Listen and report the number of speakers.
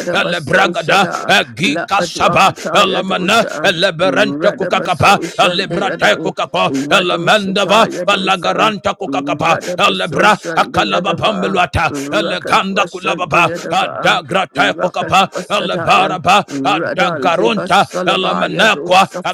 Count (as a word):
two